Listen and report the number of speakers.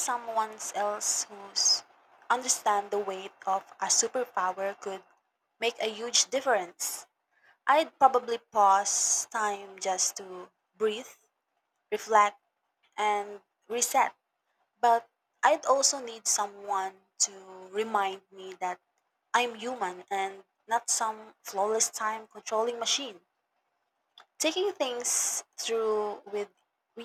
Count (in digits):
1